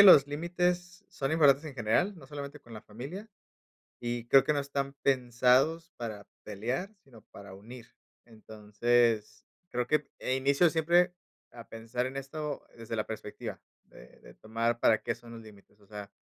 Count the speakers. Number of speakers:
1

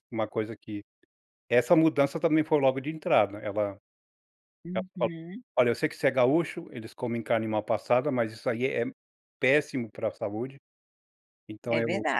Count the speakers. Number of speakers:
2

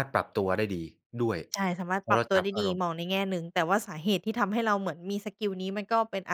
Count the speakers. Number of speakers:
2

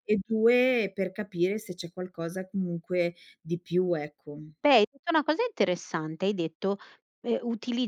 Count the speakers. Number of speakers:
2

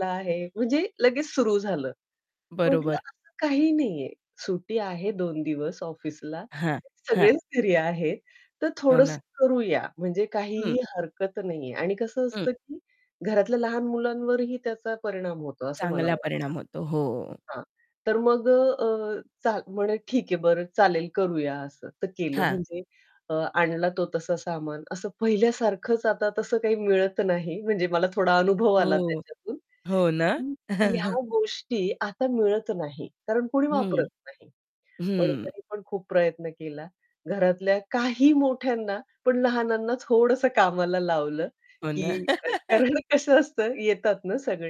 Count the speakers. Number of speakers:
2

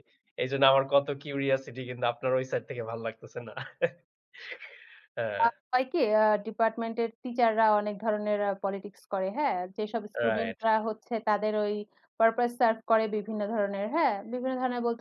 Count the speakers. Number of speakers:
2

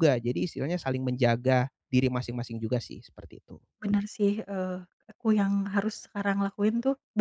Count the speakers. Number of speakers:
2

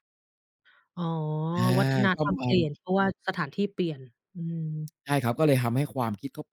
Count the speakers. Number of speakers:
2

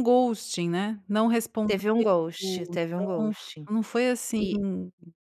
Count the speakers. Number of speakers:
2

